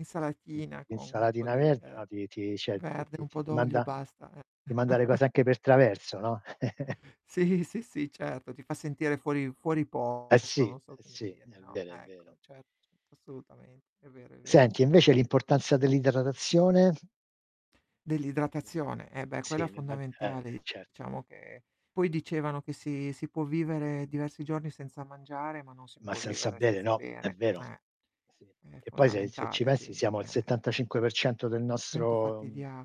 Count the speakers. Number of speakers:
two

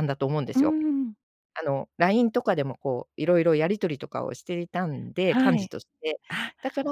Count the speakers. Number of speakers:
two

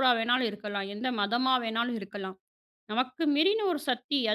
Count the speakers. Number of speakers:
one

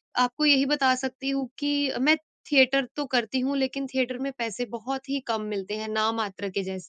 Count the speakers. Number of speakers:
one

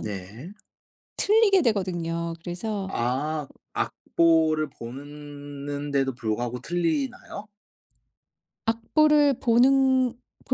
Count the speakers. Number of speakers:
two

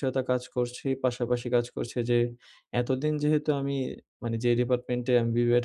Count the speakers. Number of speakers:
one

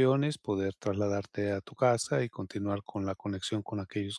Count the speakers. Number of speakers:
one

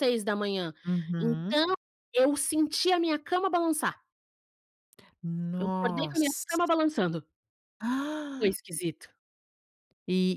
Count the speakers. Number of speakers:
two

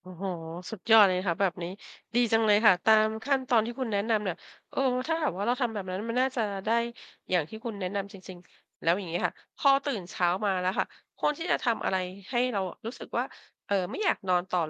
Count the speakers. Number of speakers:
one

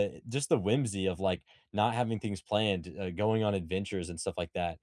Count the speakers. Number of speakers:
one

